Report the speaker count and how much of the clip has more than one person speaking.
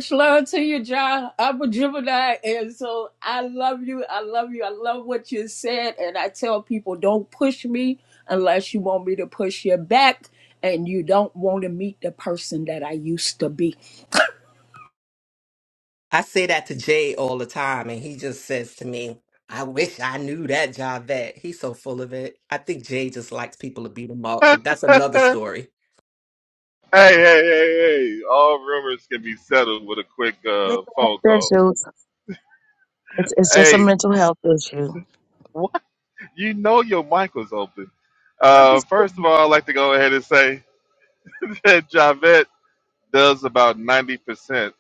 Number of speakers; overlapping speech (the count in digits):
4, about 3%